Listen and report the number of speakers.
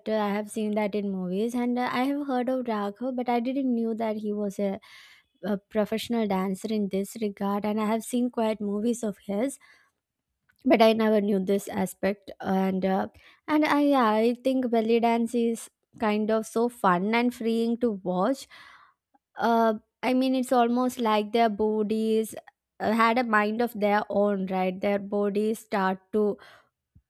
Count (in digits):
1